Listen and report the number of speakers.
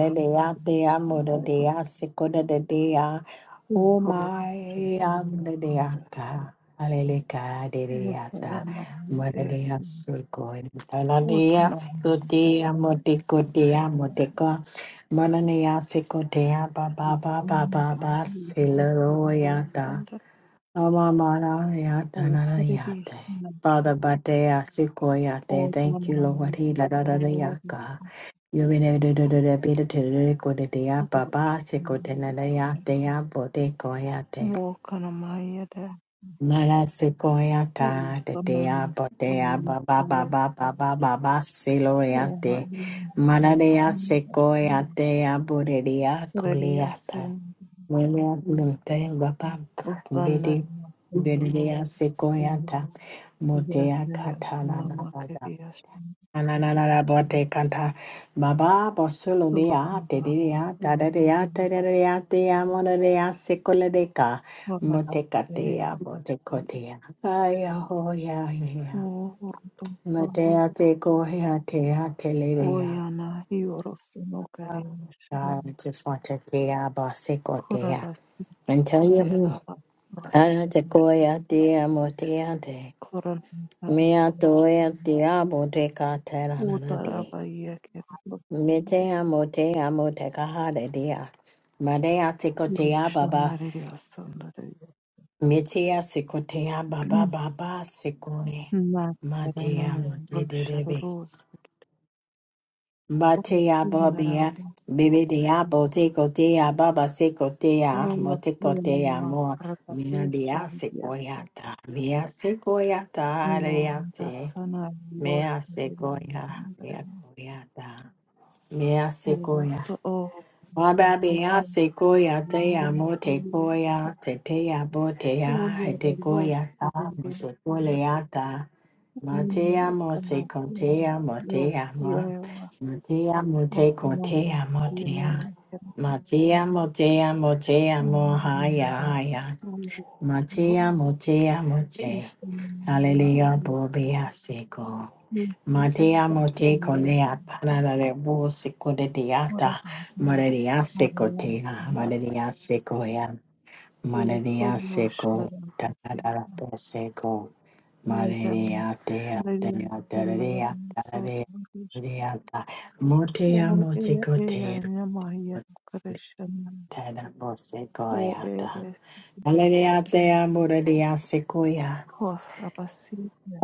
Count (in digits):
2